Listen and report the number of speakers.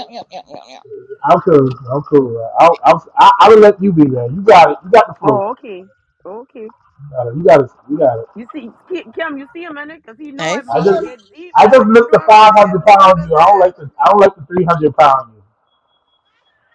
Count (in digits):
3